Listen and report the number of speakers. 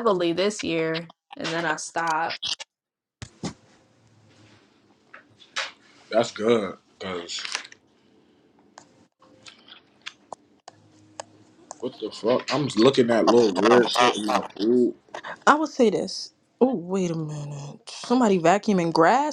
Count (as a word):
three